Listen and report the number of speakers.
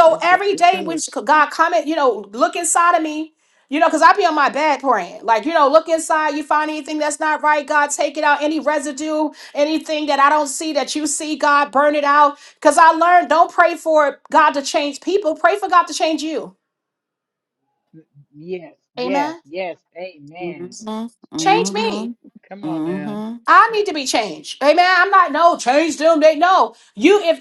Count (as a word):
three